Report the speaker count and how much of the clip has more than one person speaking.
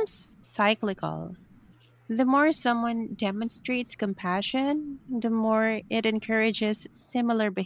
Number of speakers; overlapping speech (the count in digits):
1, no overlap